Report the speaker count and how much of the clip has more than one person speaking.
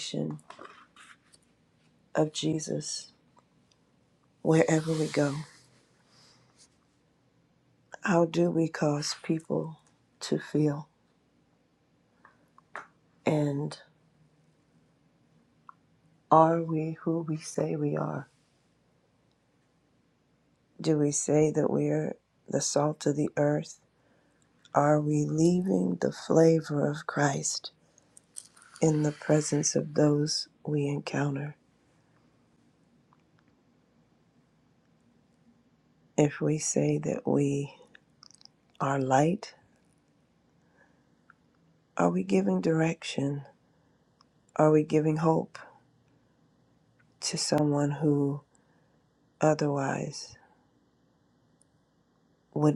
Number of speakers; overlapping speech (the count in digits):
1, no overlap